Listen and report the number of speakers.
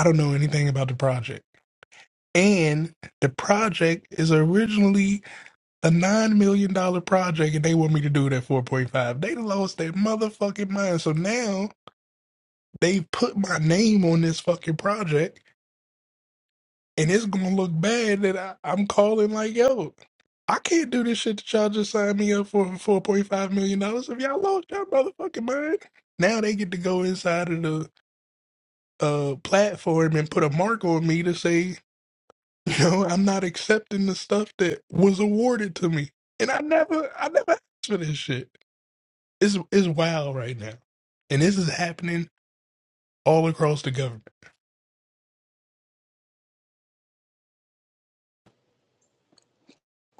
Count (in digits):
1